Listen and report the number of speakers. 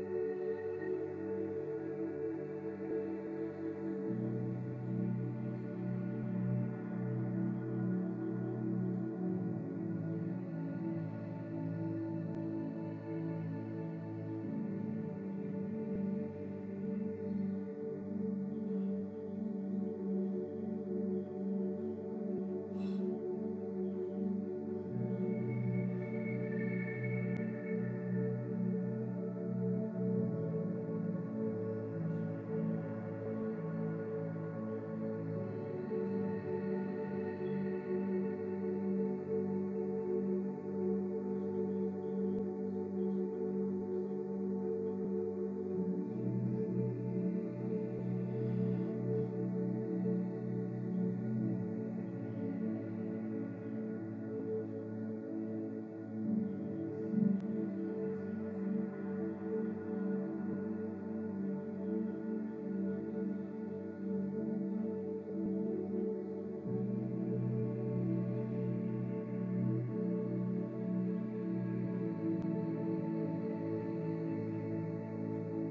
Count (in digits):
0